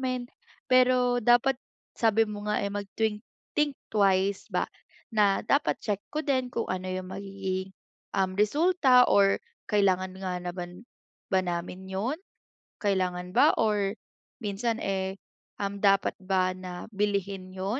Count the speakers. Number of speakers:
one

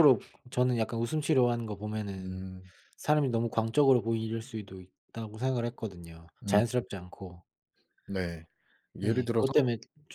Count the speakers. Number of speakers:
two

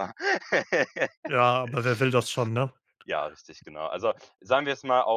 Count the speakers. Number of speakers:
two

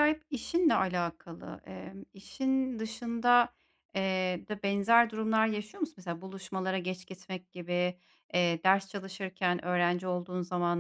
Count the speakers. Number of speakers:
one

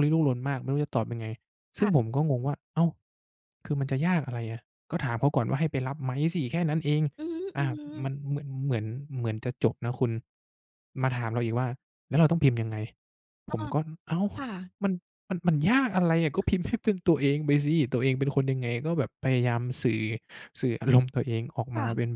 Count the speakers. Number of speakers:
two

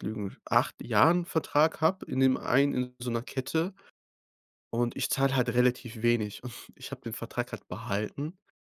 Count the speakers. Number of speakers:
one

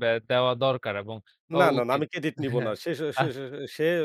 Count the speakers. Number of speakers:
two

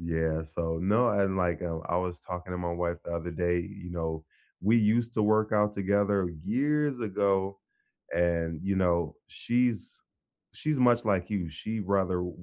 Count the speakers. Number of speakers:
one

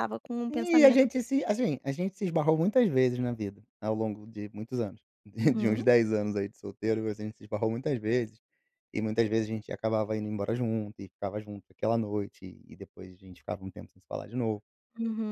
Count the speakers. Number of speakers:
two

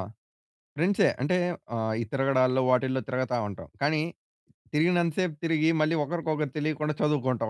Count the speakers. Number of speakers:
one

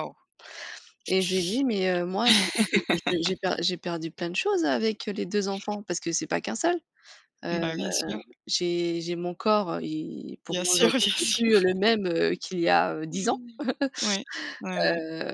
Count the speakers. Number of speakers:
two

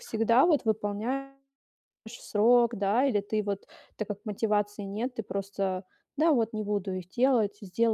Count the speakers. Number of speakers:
one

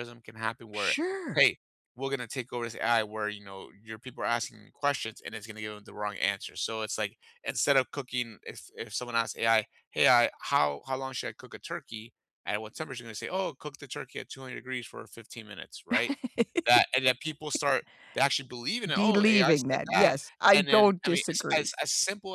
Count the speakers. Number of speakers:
two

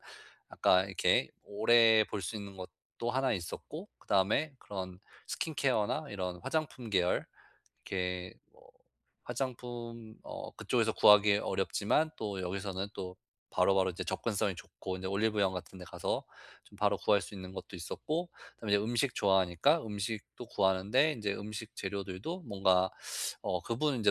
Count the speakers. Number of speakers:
one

